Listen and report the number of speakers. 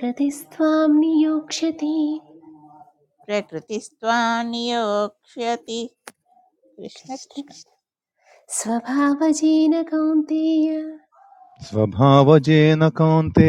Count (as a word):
three